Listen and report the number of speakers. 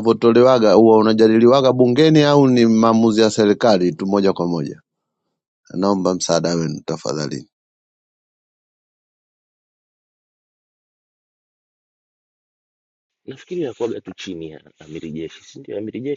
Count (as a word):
two